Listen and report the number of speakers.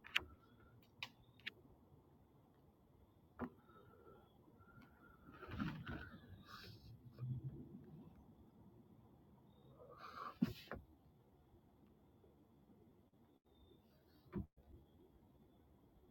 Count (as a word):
zero